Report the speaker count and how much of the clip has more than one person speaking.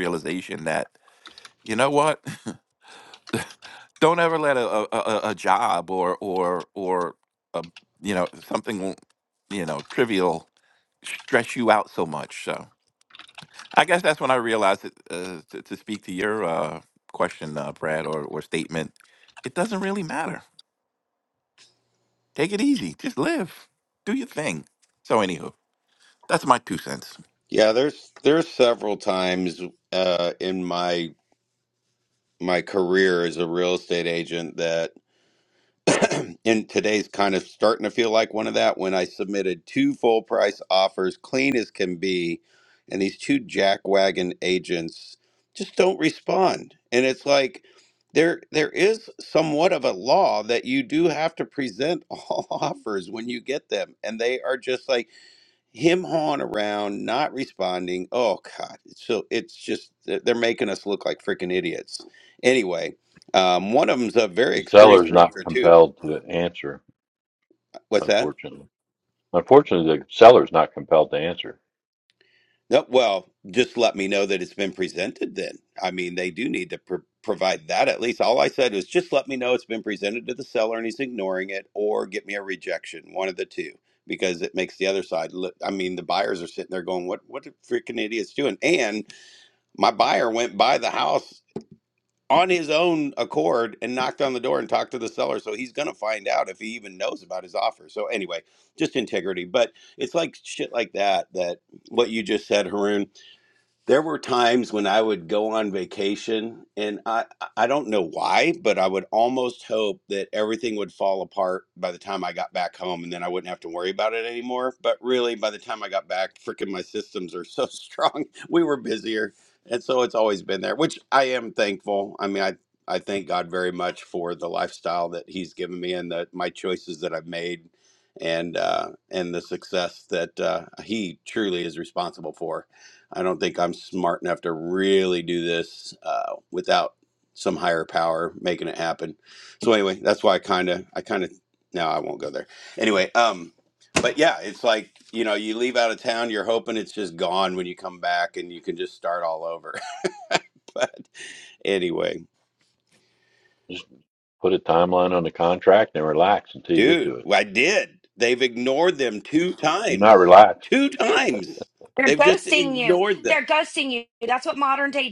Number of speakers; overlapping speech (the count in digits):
4, about 2%